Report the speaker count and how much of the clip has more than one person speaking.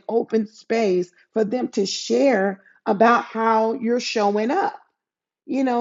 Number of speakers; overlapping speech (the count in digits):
1, no overlap